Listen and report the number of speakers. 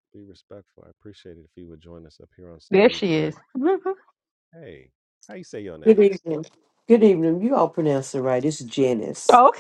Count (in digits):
3